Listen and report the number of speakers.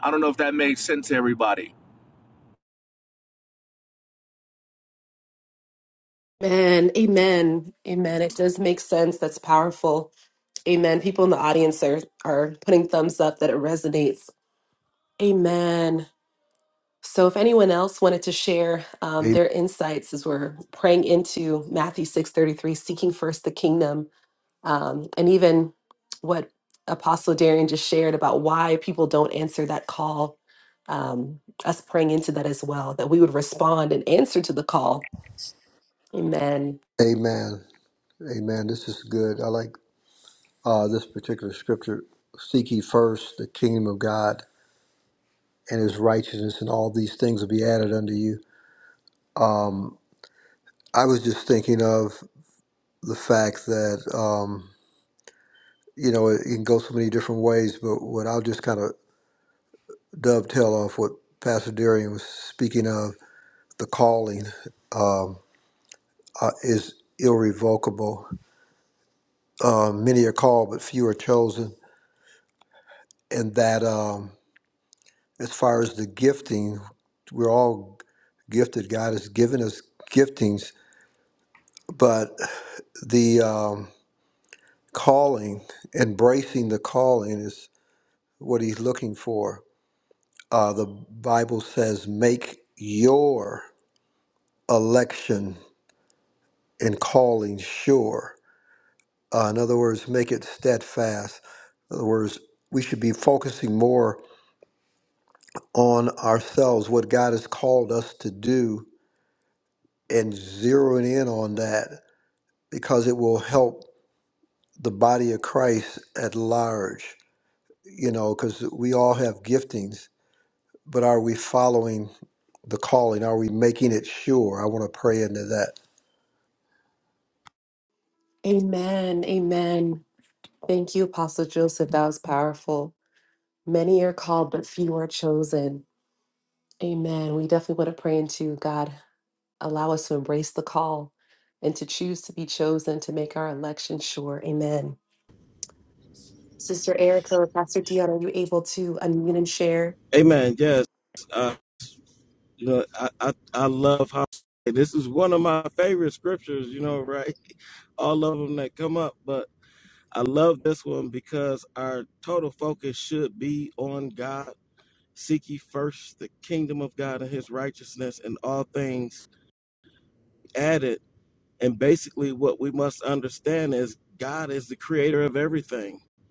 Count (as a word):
four